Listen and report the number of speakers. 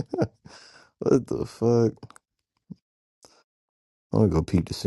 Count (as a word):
one